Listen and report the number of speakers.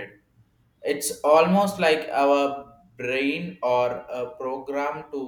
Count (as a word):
one